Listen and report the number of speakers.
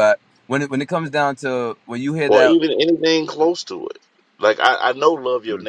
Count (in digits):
2